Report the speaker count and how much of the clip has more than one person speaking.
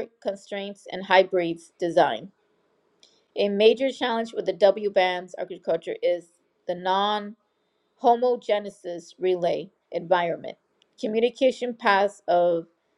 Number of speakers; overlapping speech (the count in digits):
1, no overlap